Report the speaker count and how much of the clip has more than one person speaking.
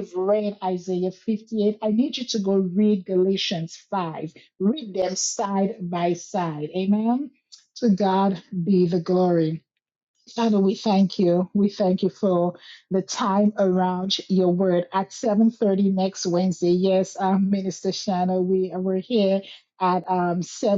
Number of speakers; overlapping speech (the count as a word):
one, no overlap